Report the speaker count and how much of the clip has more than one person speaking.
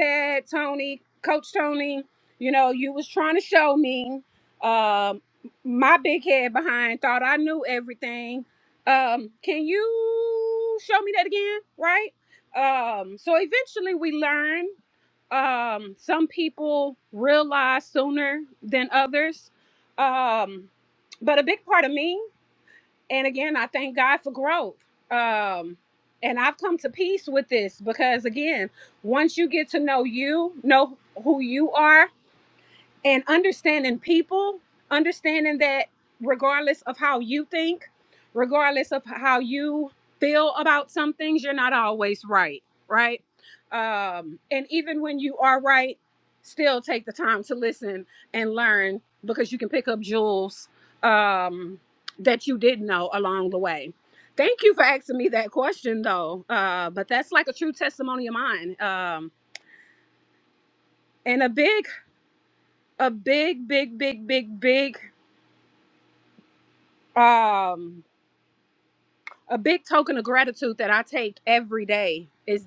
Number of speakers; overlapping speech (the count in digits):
1, no overlap